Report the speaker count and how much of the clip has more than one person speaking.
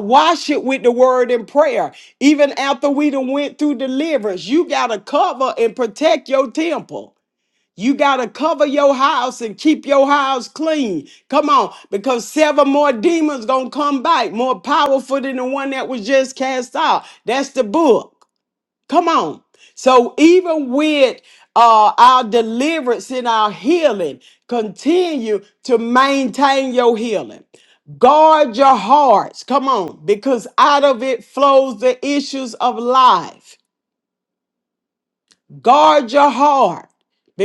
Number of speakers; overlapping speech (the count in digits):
1, no overlap